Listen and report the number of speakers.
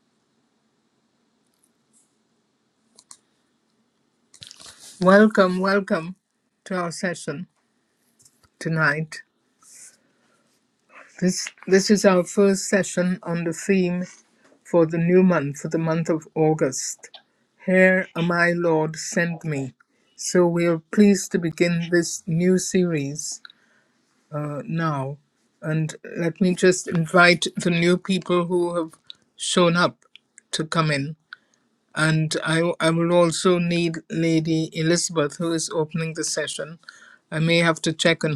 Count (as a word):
one